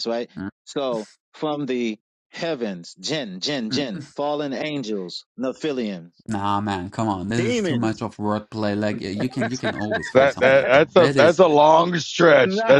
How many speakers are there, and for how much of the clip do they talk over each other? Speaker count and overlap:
3, about 18%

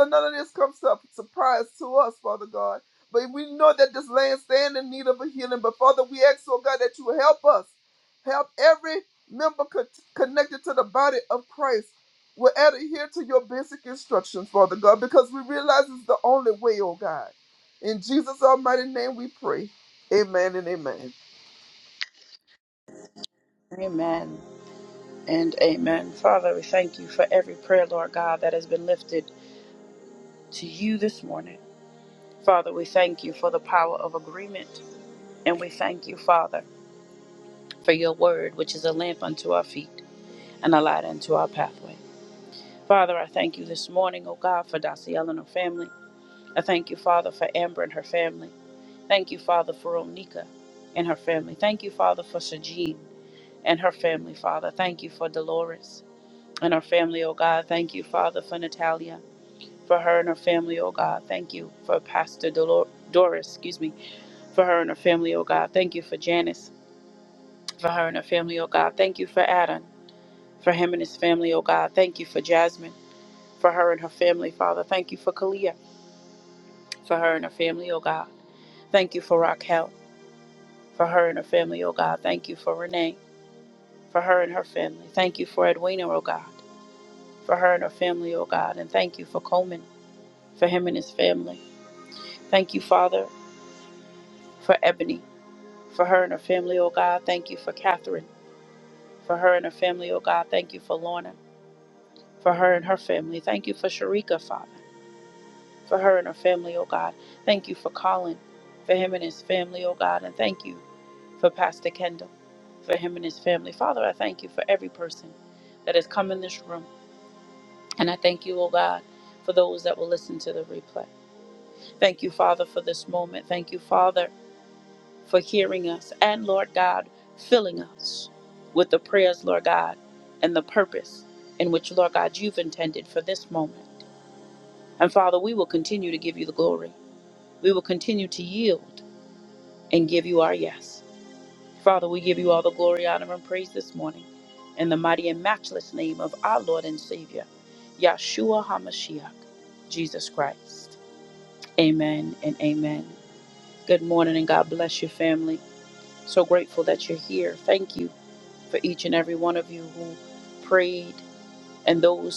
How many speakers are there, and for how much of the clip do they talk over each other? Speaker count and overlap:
2, no overlap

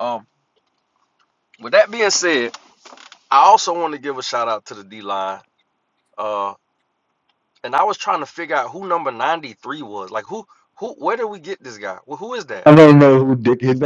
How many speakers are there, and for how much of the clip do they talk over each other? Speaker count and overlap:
2, under 1%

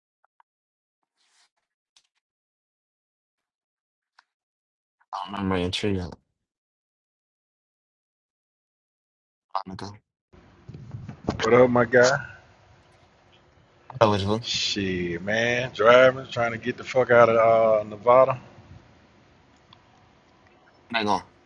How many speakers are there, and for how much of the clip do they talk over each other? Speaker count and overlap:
2, no overlap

